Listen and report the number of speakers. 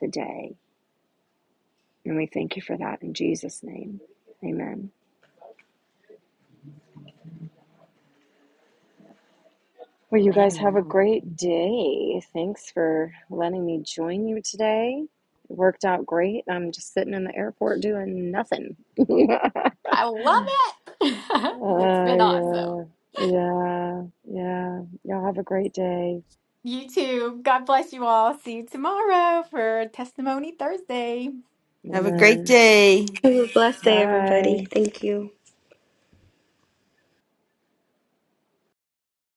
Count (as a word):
four